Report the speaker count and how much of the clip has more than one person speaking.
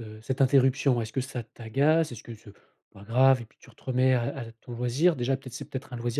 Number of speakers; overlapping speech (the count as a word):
one, no overlap